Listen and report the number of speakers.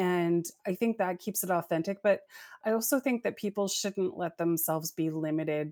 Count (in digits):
1